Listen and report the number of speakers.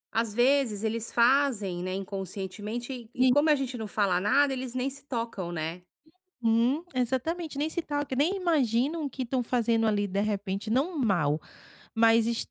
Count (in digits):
2